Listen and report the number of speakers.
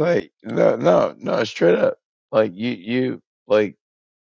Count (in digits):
1